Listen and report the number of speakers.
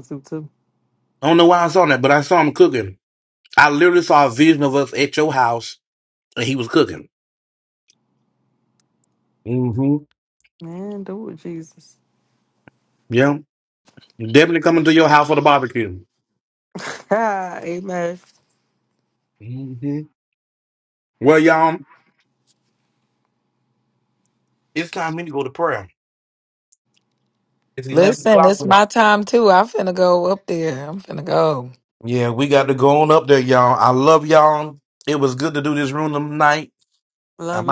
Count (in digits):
3